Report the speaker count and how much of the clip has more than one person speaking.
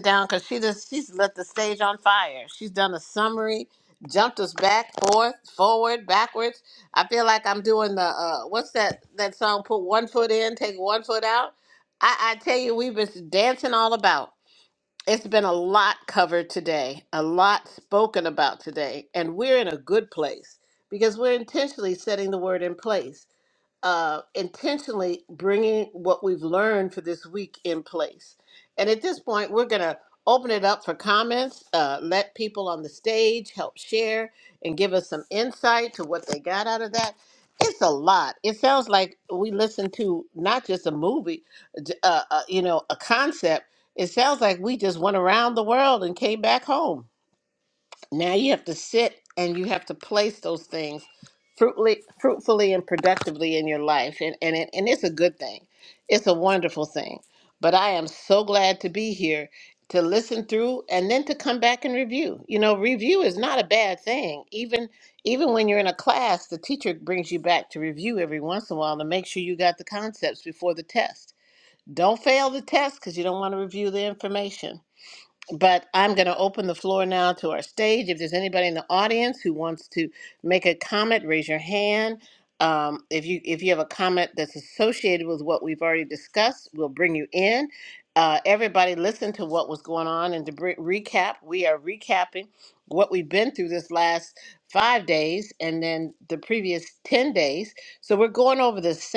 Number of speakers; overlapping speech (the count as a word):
one, no overlap